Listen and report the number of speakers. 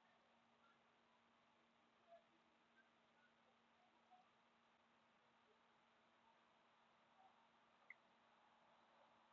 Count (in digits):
0